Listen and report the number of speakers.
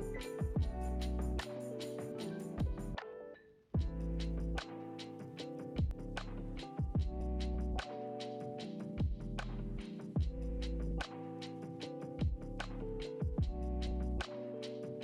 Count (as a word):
zero